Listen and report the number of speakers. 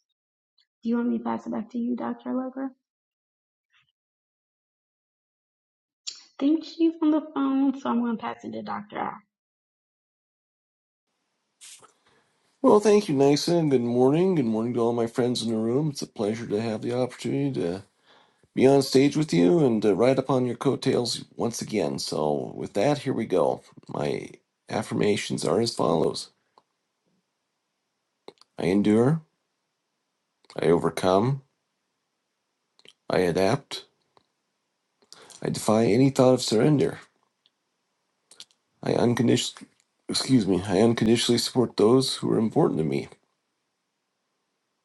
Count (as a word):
two